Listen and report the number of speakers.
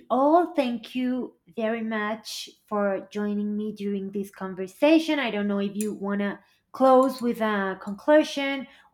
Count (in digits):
1